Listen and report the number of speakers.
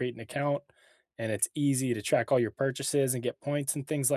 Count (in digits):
1